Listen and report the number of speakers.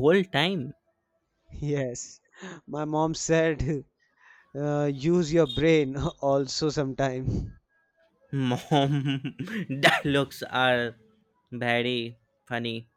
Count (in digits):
2